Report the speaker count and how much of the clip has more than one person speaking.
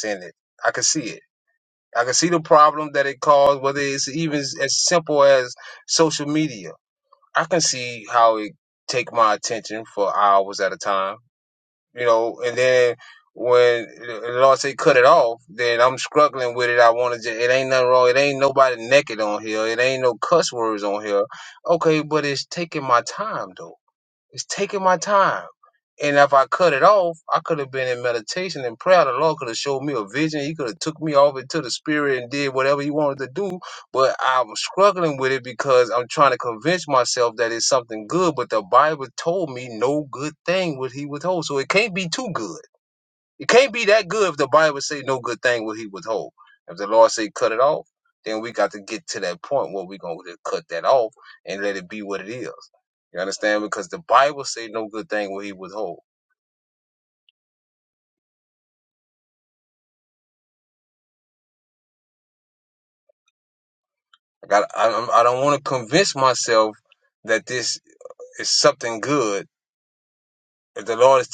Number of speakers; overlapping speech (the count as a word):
one, no overlap